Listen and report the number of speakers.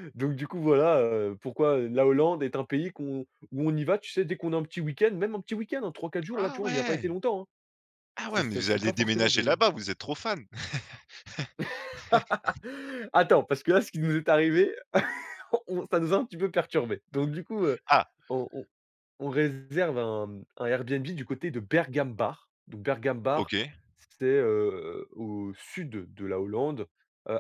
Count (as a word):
two